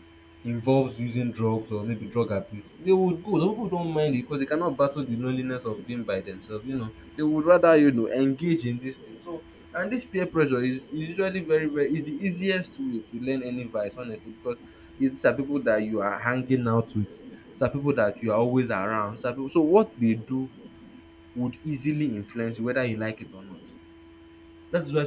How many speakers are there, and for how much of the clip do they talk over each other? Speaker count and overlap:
one, no overlap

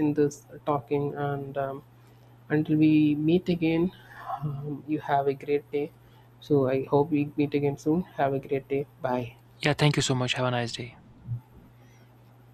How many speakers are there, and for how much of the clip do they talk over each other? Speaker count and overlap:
two, no overlap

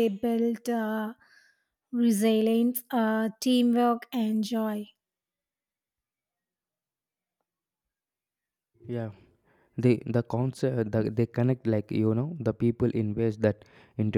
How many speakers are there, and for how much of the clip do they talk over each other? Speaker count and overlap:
two, no overlap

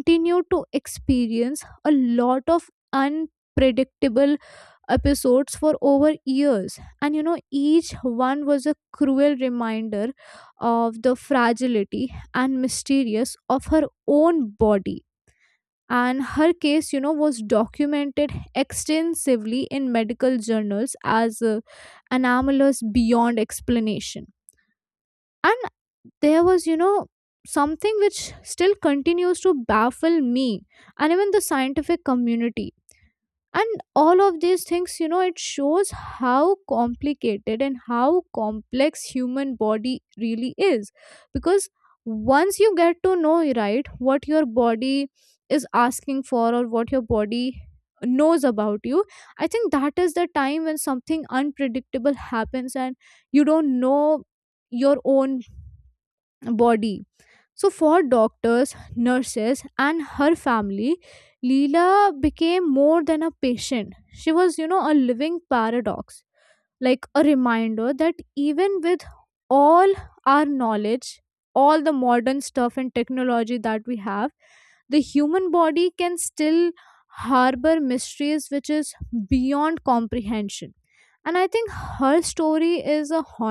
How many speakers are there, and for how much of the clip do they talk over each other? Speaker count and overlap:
one, no overlap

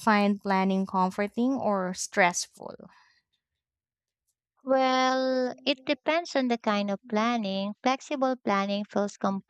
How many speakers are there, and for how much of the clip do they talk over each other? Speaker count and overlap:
two, no overlap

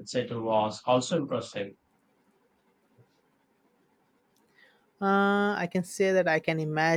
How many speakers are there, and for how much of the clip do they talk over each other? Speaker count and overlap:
two, no overlap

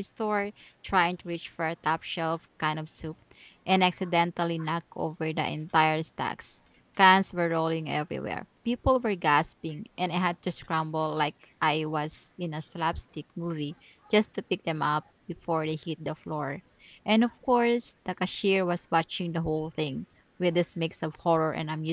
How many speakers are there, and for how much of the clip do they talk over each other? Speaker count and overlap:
one, no overlap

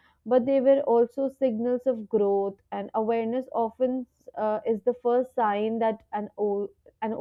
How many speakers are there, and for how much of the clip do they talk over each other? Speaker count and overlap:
one, no overlap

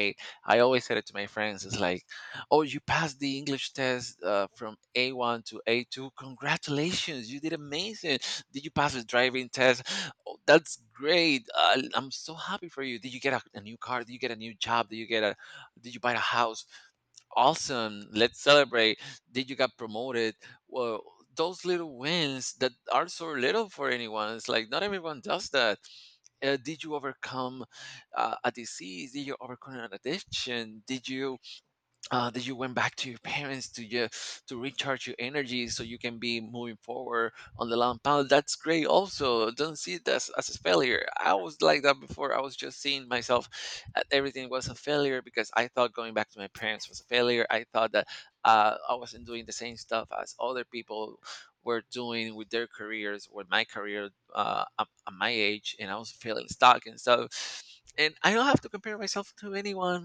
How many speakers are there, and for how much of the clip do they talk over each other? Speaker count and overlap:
one, no overlap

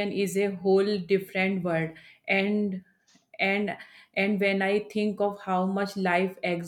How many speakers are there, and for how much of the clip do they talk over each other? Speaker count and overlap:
one, no overlap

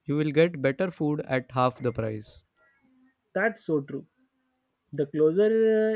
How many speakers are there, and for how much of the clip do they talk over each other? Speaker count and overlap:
two, no overlap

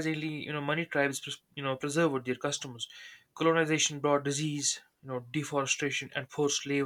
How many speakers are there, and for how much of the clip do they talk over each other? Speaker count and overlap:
one, no overlap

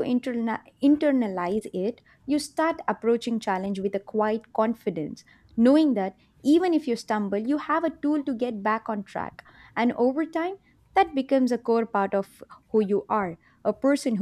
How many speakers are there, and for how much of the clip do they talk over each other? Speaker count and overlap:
one, no overlap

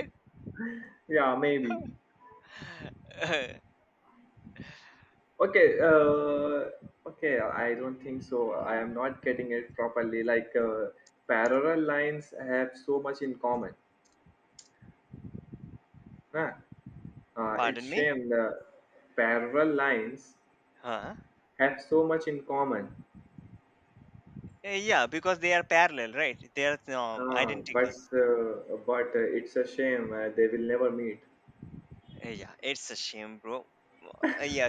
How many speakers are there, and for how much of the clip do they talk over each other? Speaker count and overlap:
two, about 4%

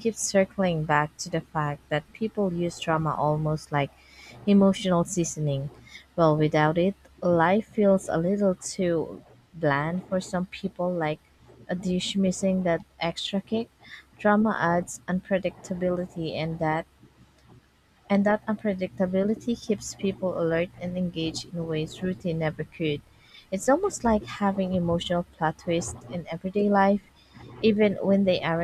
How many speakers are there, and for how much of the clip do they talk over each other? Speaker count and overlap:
one, no overlap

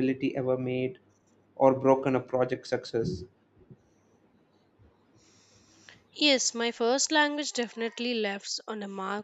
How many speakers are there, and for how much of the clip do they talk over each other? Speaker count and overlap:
two, no overlap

